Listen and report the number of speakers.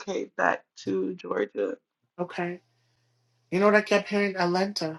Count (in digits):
2